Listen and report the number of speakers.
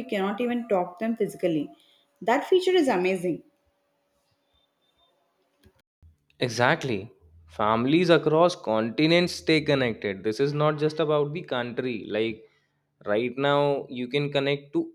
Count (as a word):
two